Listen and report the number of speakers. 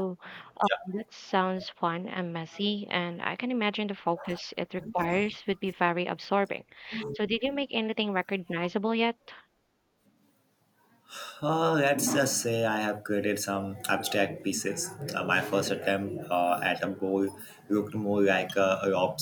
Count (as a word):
two